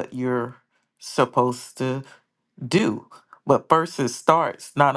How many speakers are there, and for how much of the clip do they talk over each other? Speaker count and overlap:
1, no overlap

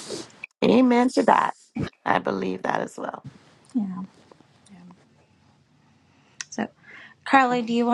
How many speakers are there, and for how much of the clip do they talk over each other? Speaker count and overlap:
2, no overlap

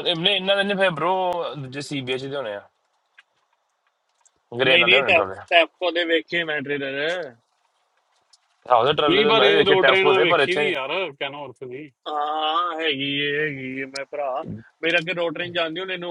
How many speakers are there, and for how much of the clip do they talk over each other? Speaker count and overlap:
3, about 15%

